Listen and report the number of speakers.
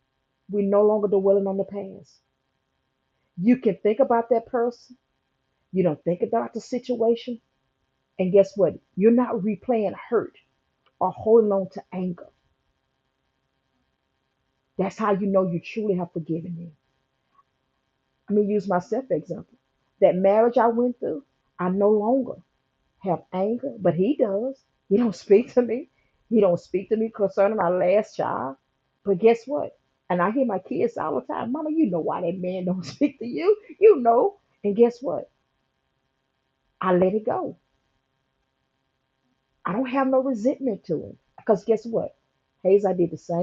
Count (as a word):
one